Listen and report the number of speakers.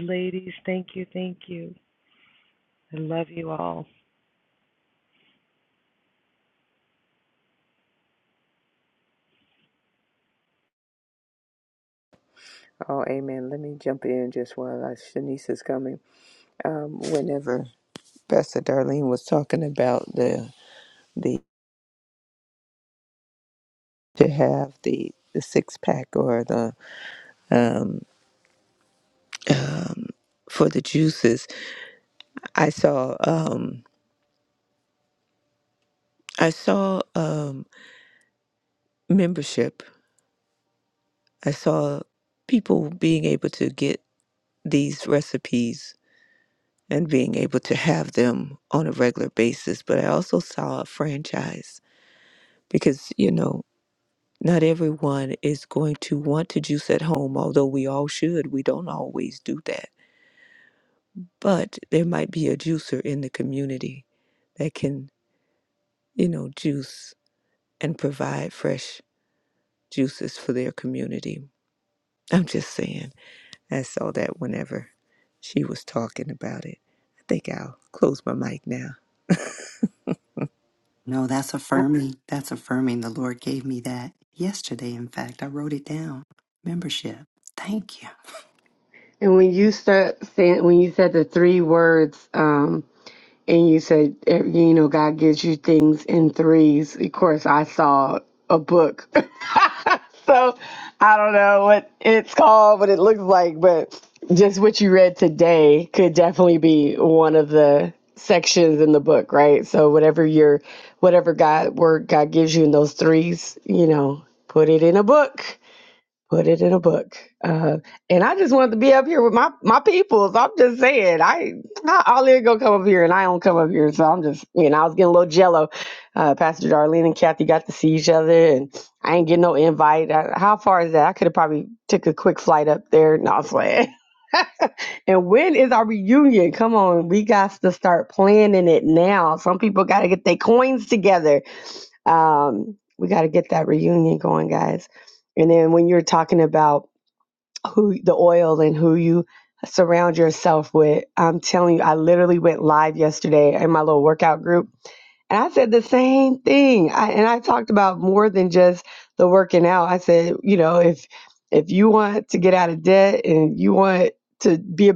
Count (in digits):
4